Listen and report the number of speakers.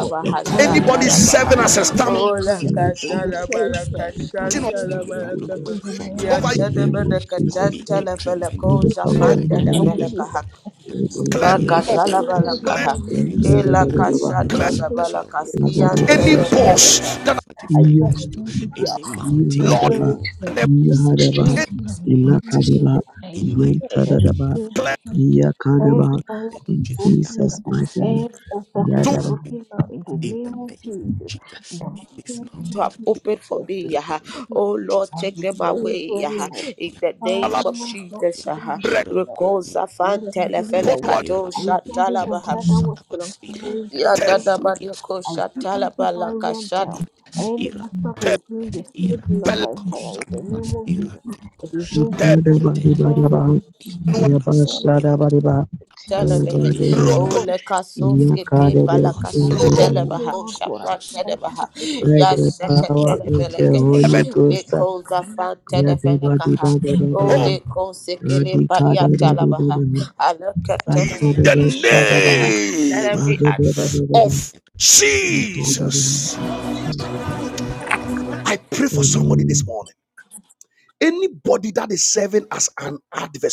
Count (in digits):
5